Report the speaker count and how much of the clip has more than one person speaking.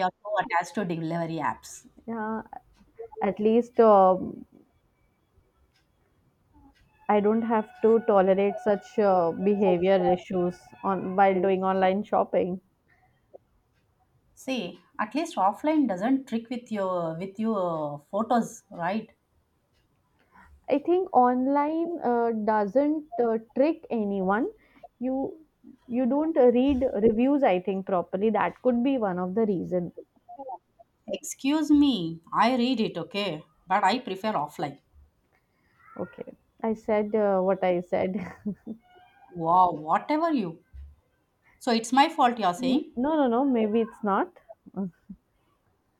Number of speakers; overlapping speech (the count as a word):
two, about 1%